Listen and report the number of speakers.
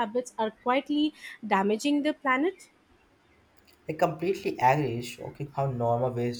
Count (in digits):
2